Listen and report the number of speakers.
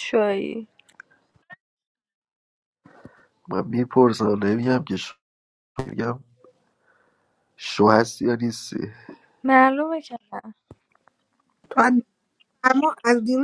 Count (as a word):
three